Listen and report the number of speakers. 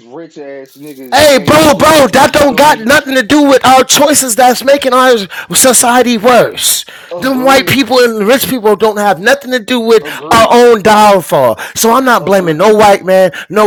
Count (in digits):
2